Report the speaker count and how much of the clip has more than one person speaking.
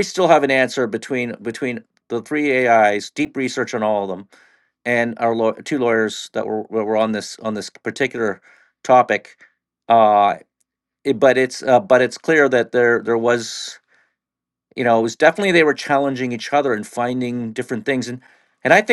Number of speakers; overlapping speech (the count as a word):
one, no overlap